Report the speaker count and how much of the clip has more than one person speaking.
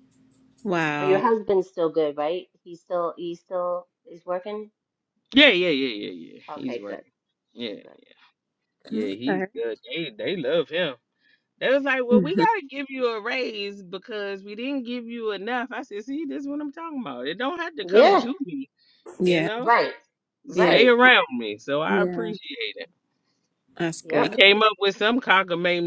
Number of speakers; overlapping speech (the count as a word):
three, about 14%